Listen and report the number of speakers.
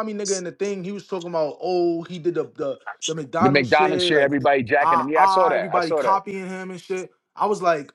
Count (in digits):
2